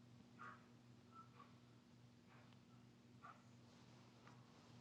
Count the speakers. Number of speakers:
0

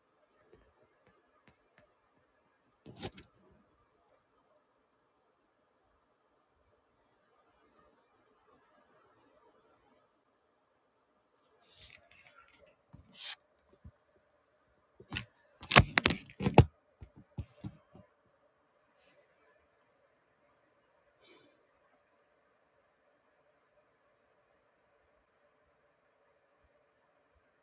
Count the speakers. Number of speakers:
0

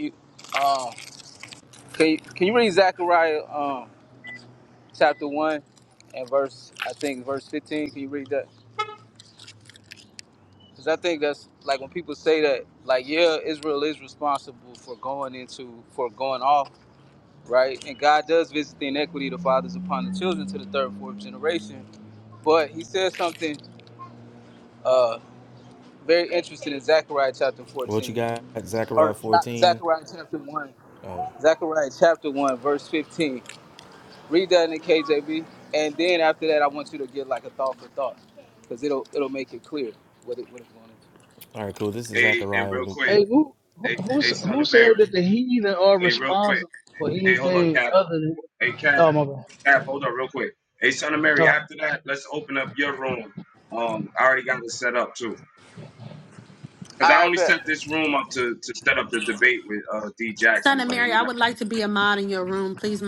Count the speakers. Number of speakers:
5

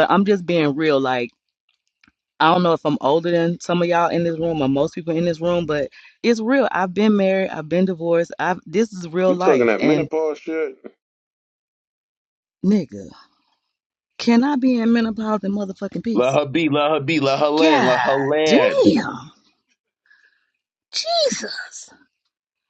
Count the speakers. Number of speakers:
3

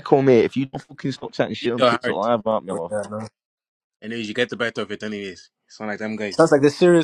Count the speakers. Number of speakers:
3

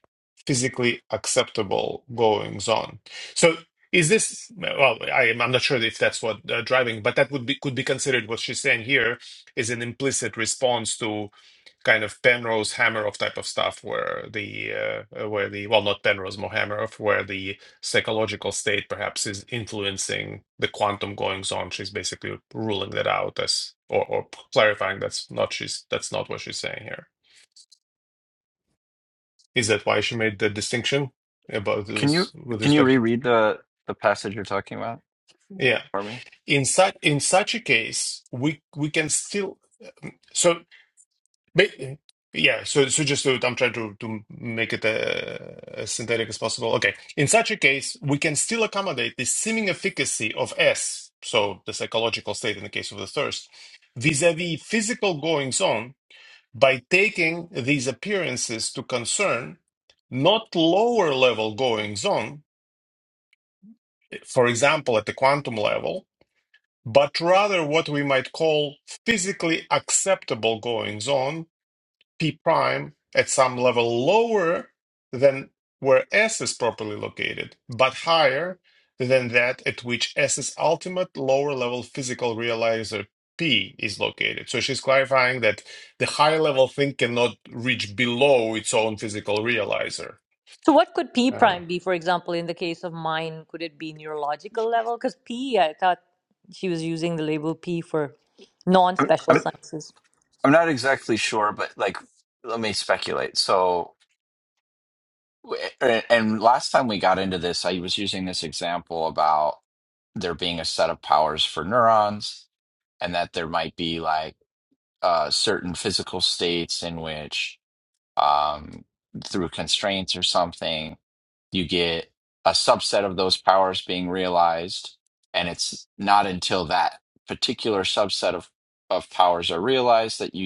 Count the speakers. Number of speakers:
3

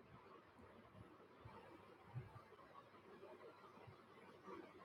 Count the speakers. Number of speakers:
0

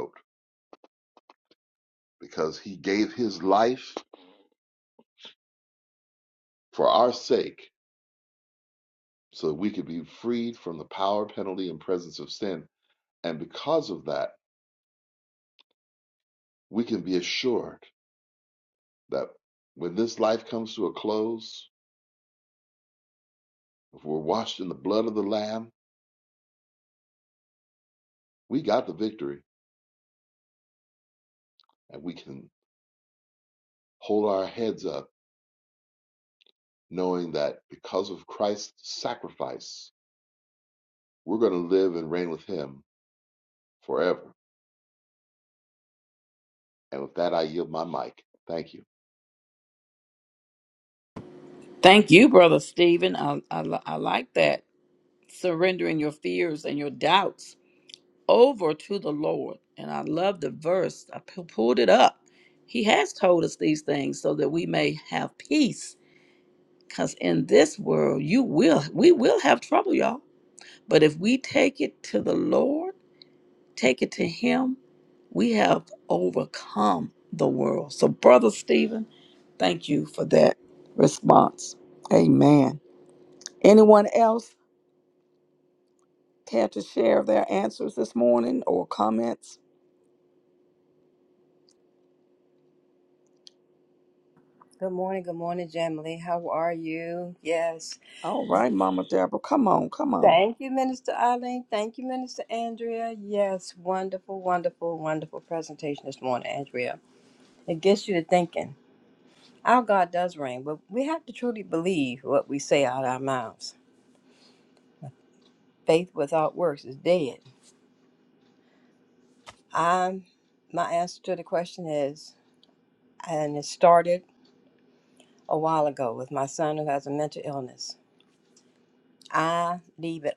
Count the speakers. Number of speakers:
3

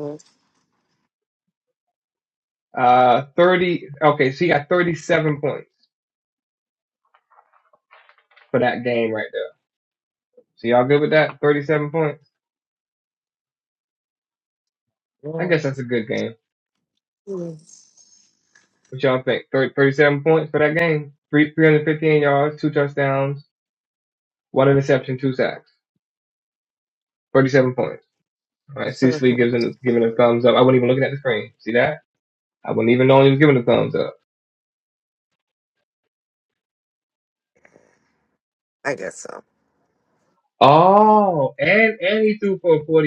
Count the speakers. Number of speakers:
2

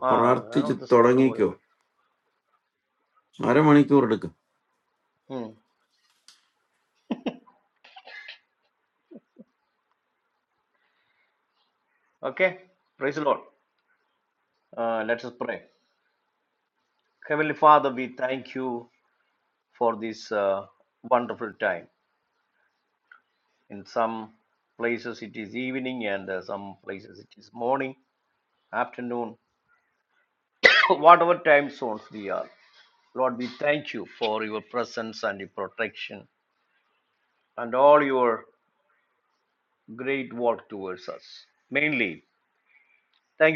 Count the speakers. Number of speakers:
2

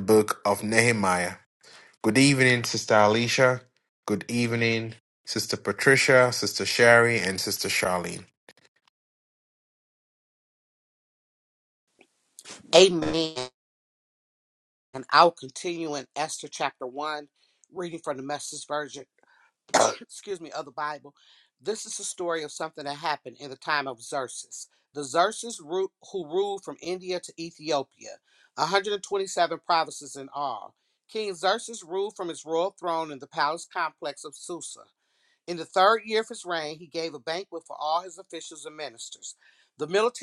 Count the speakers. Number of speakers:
2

